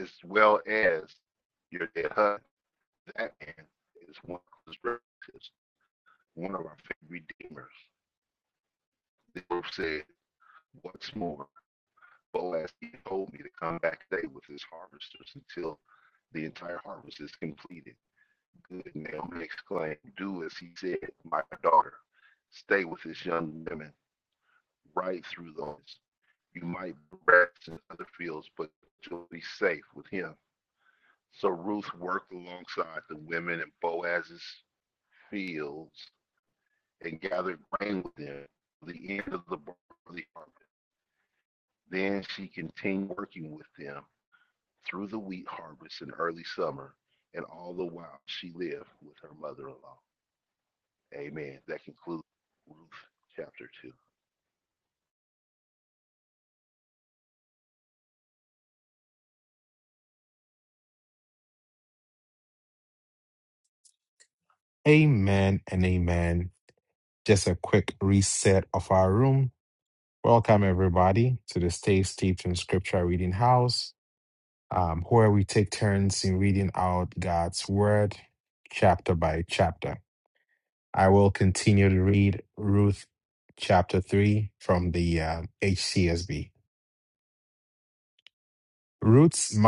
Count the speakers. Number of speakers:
two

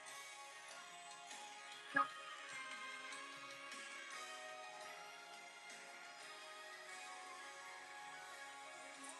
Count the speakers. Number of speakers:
zero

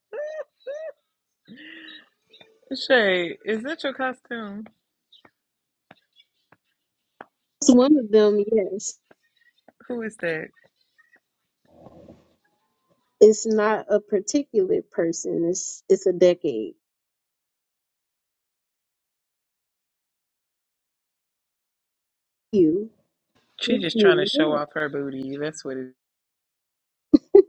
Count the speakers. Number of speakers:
two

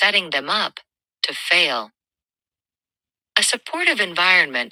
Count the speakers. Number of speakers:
one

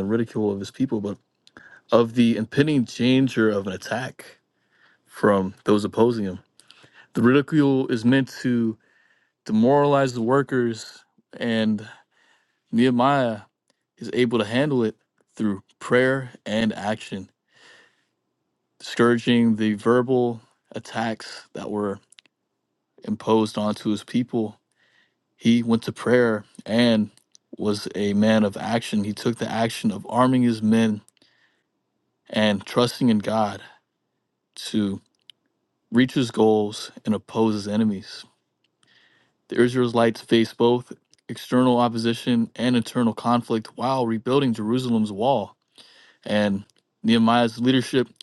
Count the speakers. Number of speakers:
one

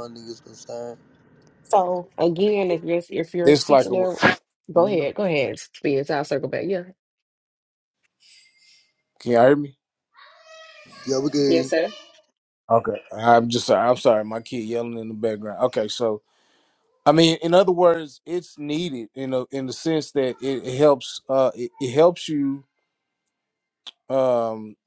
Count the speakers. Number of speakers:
three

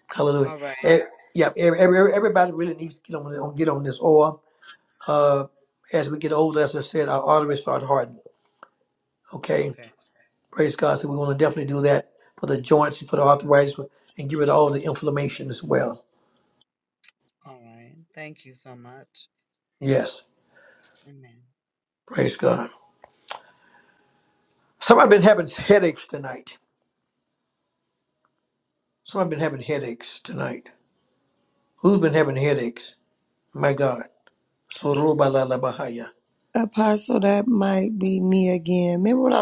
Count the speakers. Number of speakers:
three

